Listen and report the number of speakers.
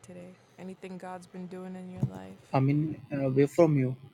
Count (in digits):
2